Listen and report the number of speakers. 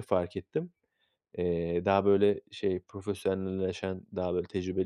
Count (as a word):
one